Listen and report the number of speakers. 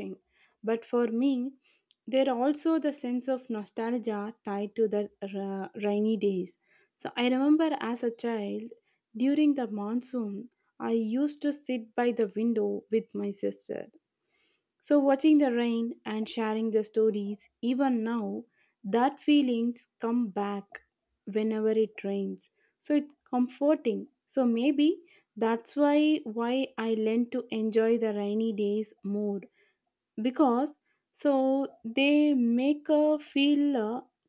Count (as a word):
one